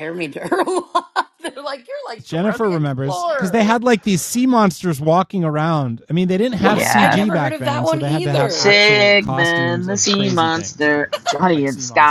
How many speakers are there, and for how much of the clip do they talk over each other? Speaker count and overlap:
3, about 52%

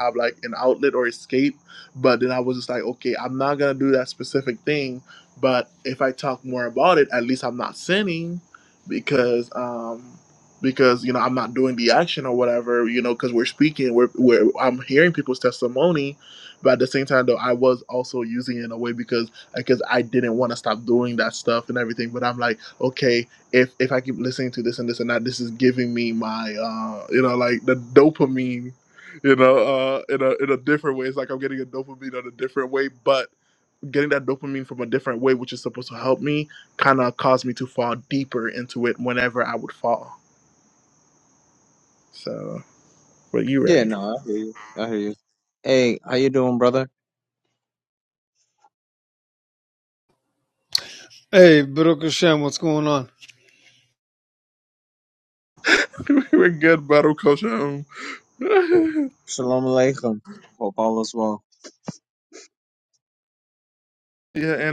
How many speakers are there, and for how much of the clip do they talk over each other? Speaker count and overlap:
3, under 1%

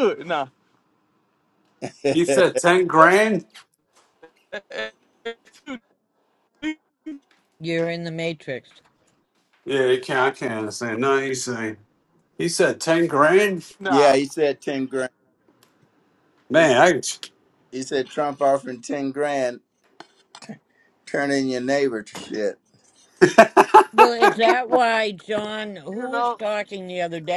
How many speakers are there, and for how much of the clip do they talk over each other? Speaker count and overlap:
4, about 4%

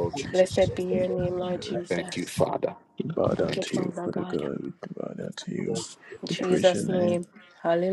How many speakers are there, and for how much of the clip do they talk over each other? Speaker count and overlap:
3, about 33%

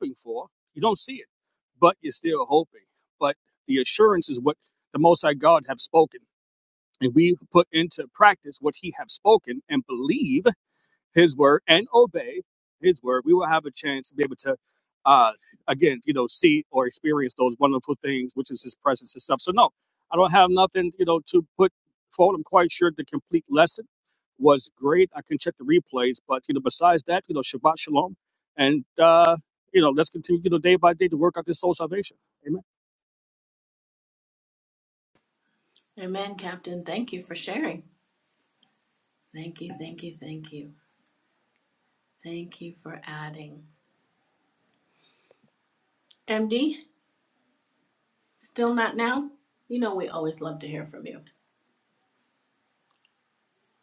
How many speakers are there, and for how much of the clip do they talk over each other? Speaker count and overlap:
2, no overlap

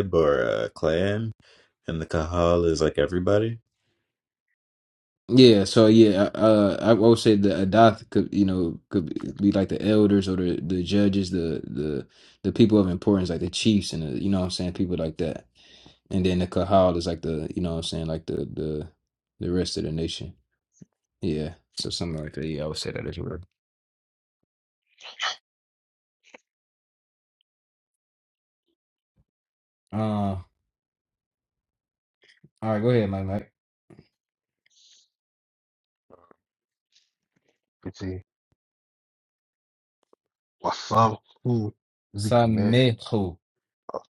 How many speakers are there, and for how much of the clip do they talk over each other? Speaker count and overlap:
3, about 1%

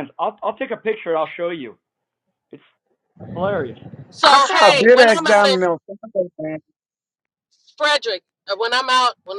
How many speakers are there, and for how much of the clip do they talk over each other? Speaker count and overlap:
3, about 14%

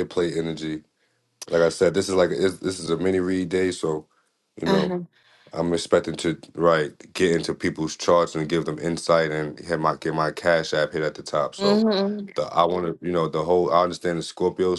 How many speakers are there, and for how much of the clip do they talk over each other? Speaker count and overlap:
2, about 3%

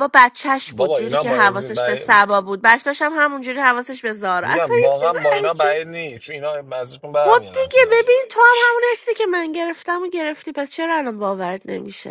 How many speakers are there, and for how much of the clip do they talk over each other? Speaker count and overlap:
2, about 27%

